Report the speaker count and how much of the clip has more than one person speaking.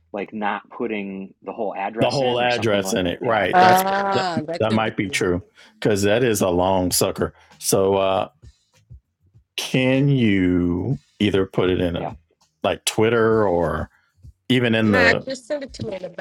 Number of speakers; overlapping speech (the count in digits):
3, about 19%